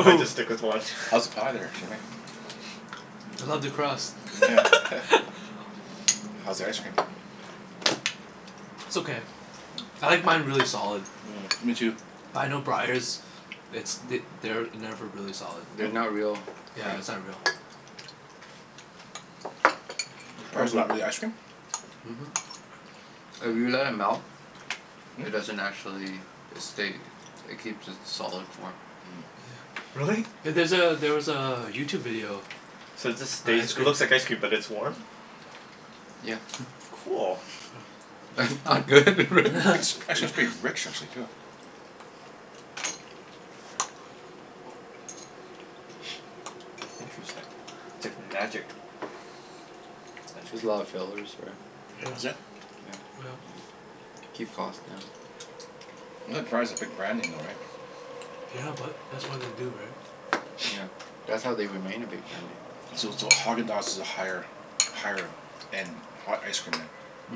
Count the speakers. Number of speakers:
four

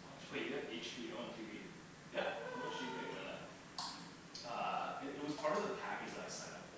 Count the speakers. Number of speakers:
two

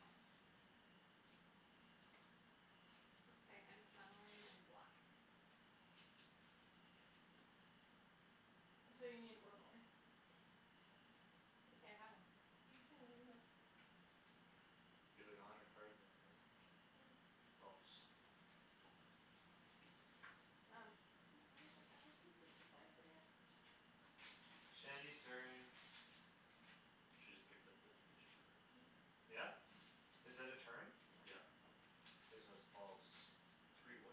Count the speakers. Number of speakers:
four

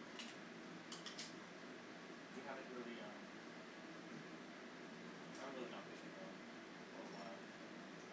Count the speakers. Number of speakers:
one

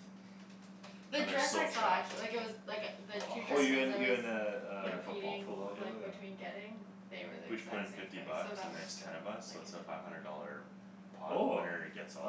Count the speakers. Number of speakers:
three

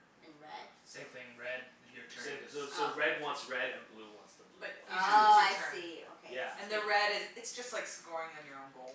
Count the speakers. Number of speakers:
four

